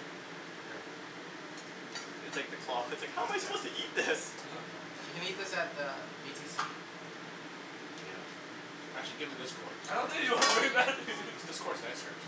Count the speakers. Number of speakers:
4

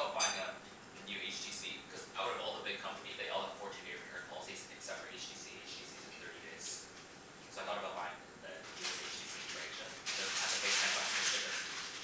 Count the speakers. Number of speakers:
1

